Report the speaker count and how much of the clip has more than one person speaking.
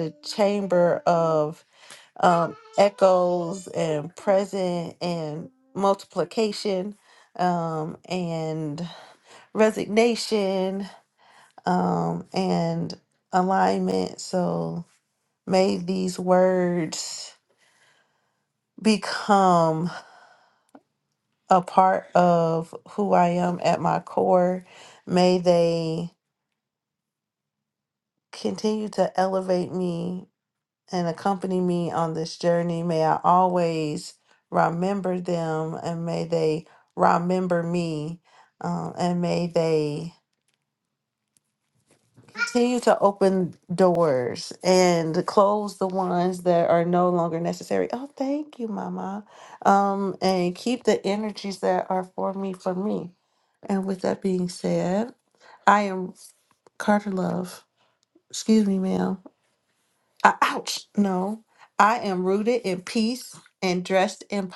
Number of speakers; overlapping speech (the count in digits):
1, no overlap